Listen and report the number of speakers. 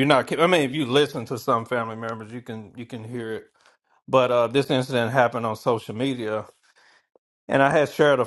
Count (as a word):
one